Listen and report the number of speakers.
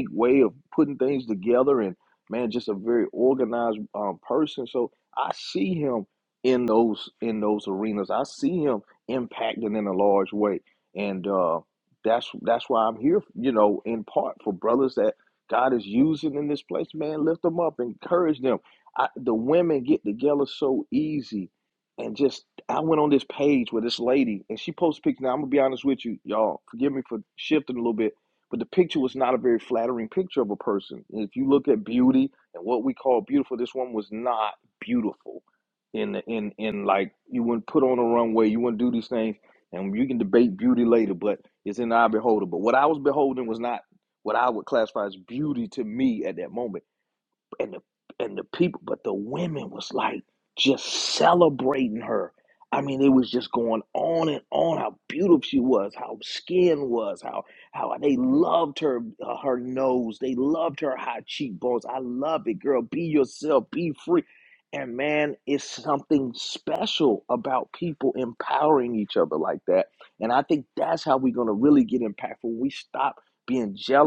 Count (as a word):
one